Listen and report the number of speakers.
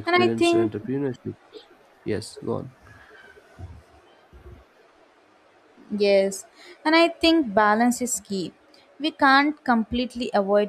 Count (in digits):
2